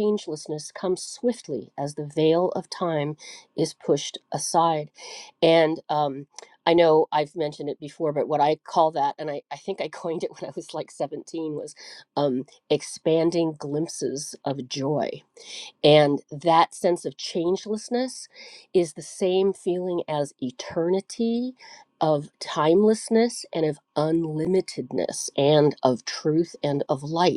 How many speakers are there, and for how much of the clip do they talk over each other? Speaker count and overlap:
1, no overlap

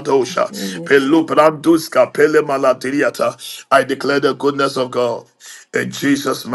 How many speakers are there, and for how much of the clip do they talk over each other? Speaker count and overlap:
1, no overlap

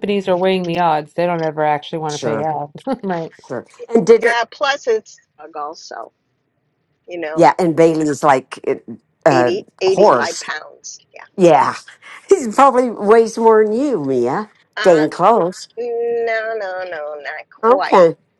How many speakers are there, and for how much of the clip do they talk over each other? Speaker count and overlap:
3, about 14%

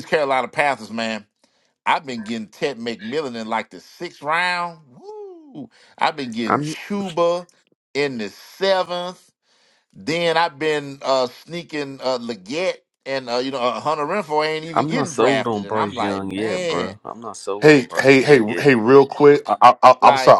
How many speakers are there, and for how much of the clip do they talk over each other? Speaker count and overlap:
3, about 20%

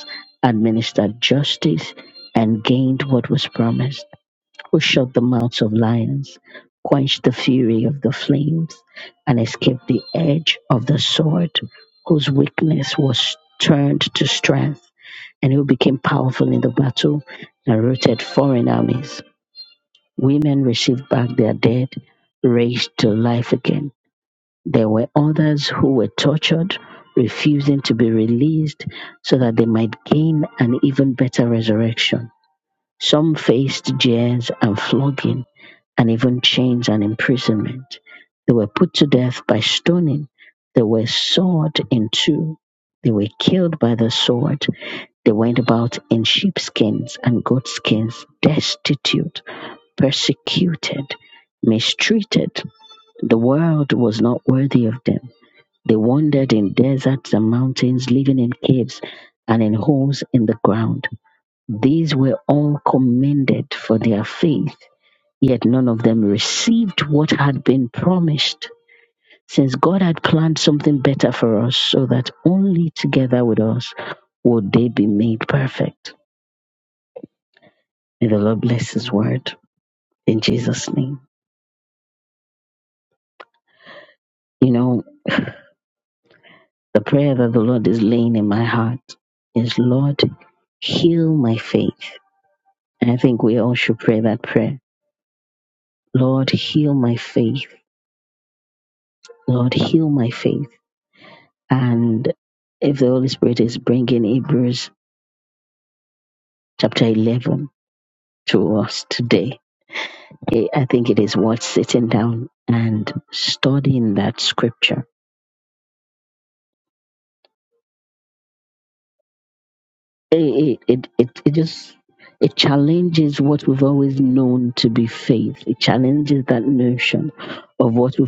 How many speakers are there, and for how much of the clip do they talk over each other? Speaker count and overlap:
1, no overlap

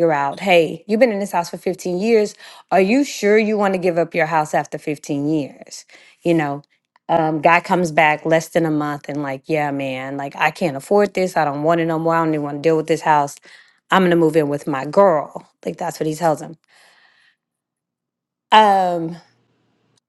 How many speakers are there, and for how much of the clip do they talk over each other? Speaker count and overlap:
1, no overlap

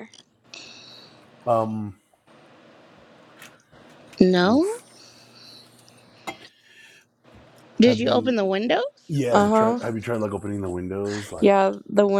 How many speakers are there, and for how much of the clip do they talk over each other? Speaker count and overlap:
3, about 13%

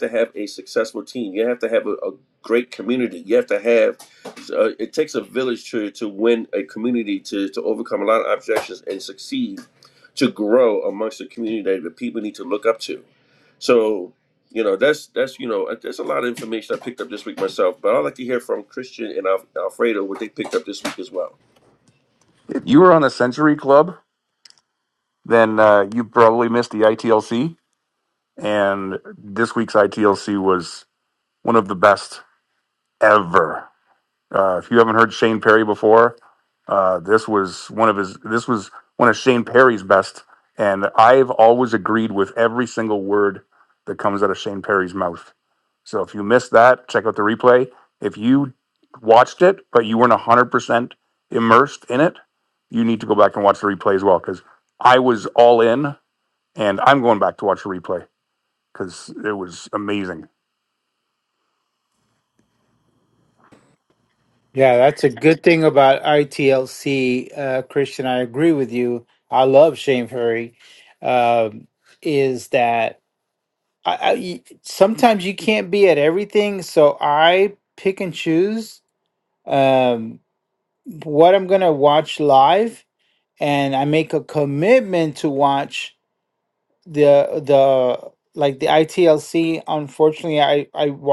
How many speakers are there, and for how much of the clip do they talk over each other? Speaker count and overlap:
3, no overlap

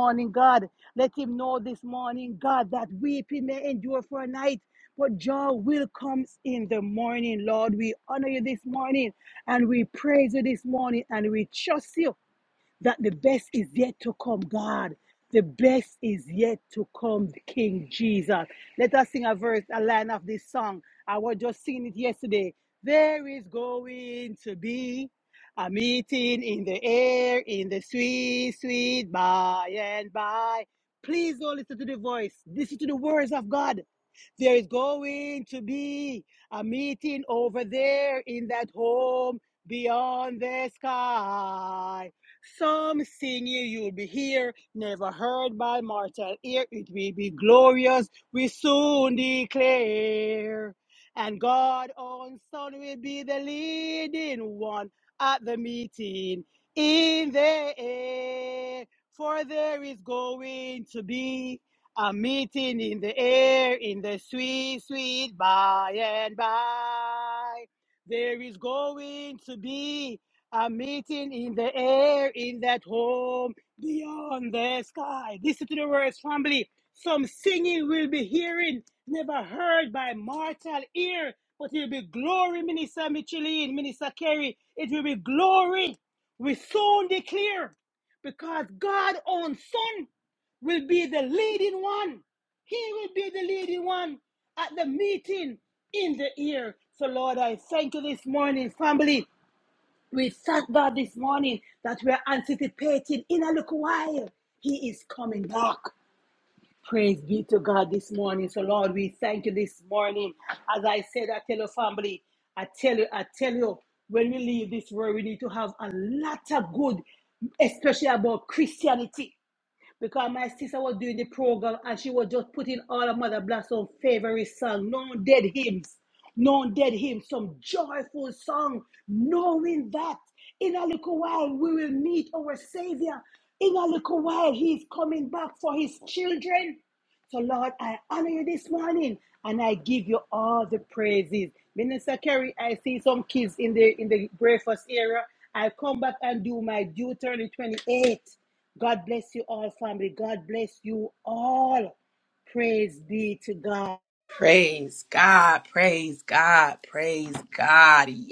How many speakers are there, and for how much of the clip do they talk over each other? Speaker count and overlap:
2, no overlap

